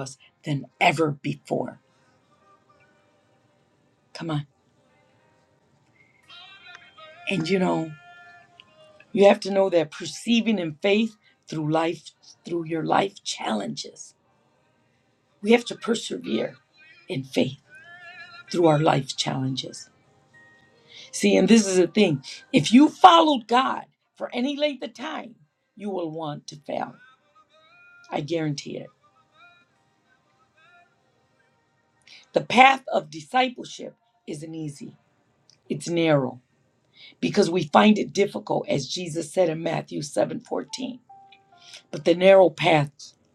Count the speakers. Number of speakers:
one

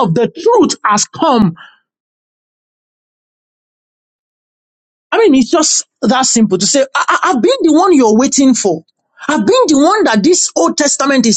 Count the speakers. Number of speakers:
one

